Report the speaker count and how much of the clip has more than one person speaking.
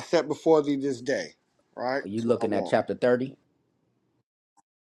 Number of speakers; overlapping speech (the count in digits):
2, about 14%